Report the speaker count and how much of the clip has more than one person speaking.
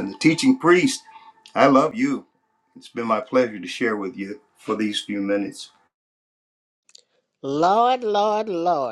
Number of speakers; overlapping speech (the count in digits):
2, no overlap